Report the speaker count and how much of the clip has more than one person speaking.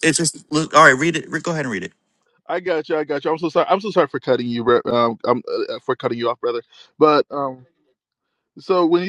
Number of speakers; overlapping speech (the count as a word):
two, no overlap